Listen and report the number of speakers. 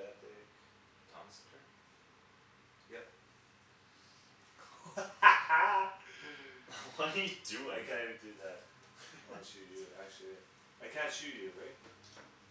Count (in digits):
2